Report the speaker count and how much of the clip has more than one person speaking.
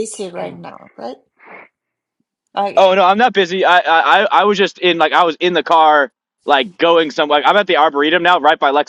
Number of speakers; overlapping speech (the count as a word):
two, about 1%